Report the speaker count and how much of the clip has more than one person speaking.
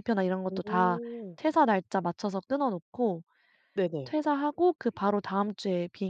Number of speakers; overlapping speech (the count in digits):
2, about 8%